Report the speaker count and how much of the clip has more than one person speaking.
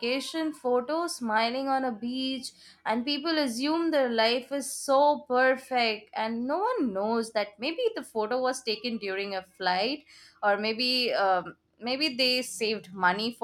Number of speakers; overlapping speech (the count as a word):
one, no overlap